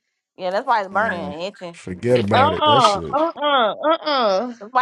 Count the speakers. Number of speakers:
3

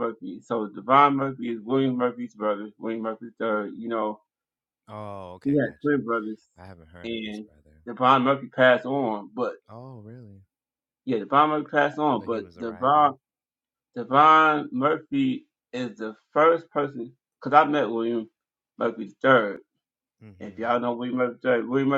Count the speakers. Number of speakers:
2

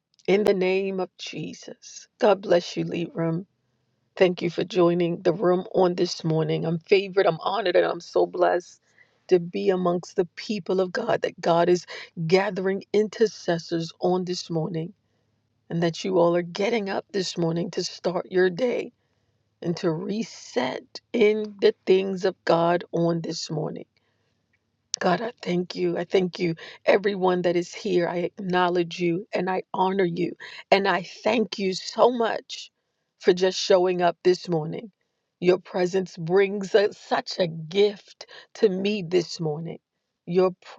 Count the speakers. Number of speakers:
1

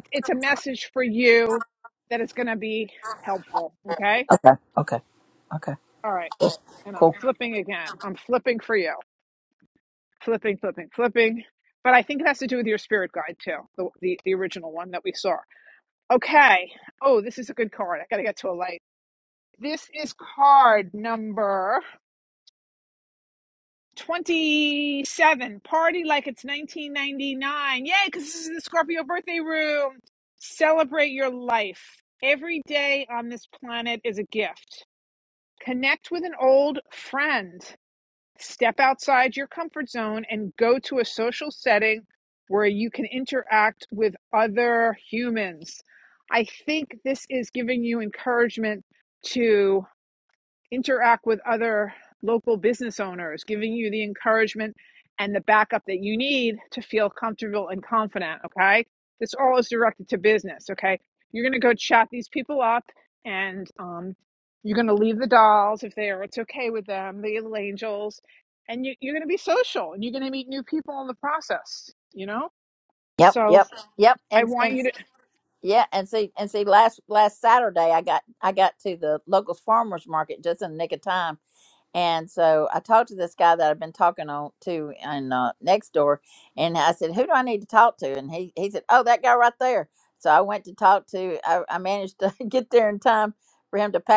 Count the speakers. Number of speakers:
2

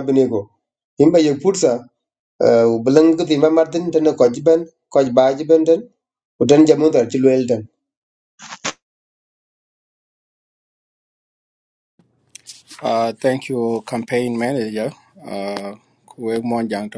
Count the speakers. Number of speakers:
2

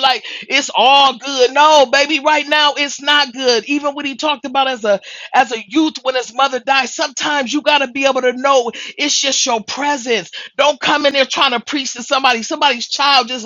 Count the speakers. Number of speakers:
1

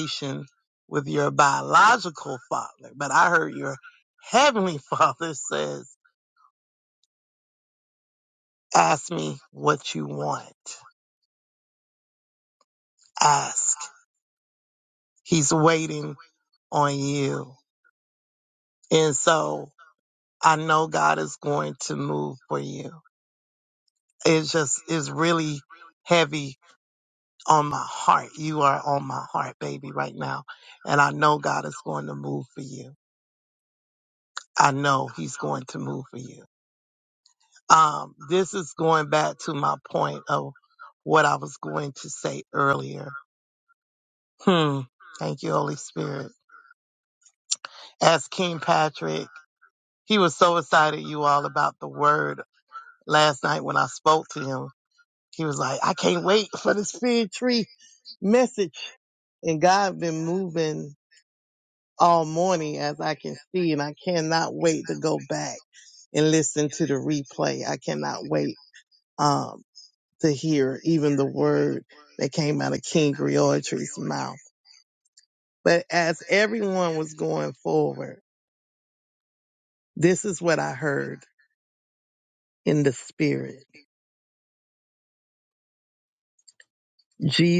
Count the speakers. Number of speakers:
1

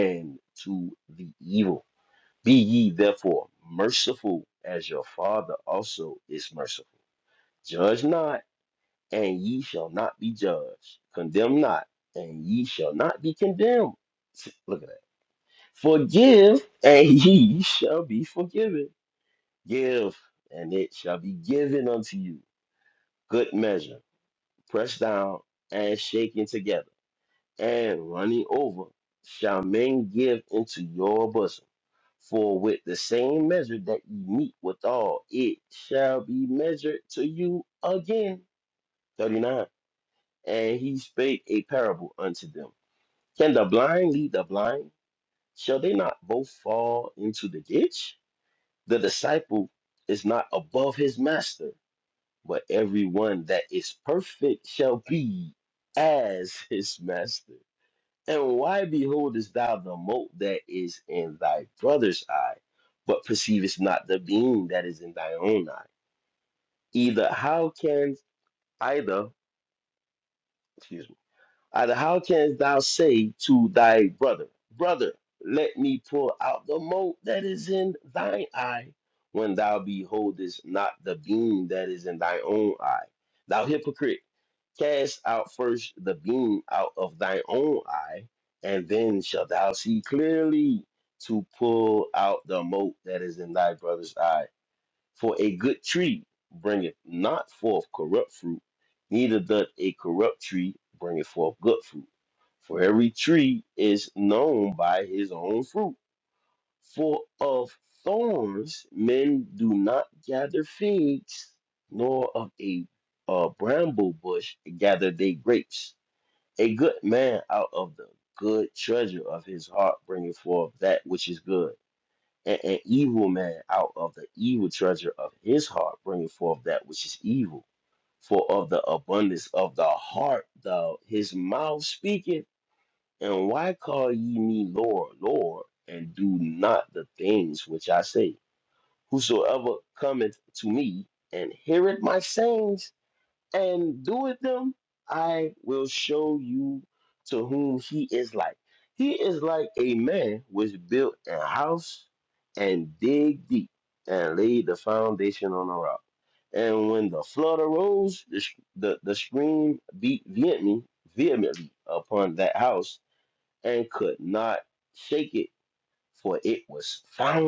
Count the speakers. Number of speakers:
1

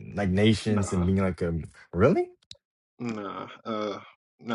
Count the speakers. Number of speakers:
2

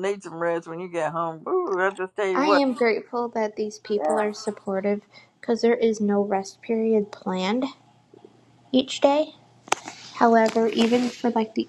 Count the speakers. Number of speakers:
2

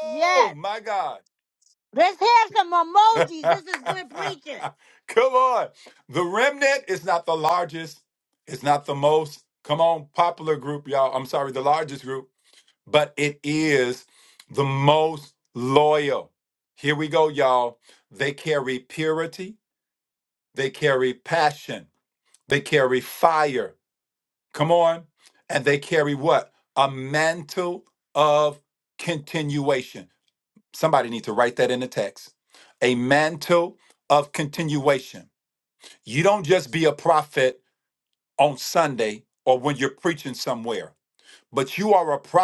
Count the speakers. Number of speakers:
2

